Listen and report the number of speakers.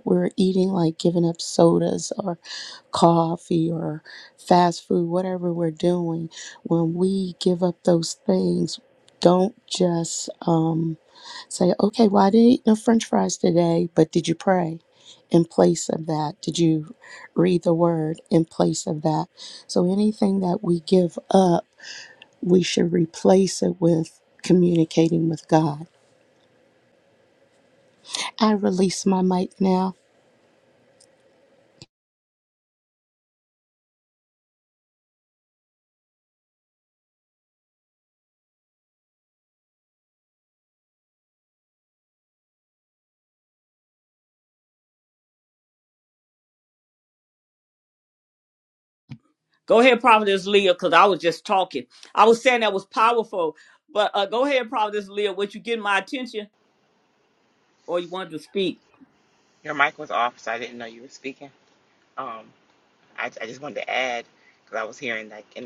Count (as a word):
three